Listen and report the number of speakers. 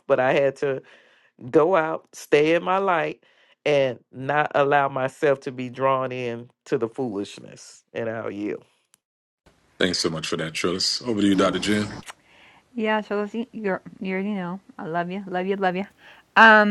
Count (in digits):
3